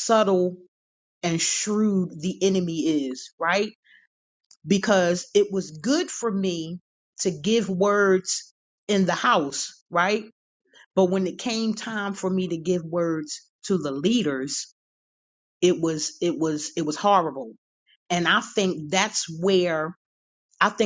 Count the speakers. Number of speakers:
1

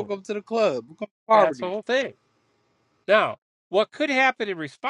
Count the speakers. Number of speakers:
2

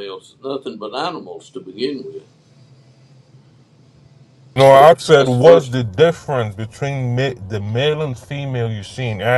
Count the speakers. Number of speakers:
2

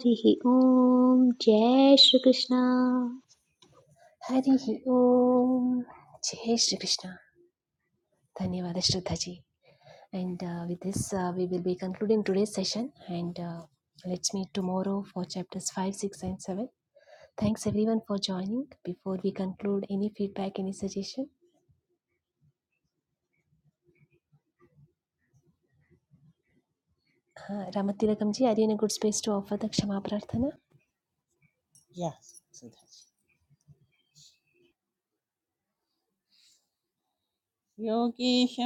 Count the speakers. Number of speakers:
3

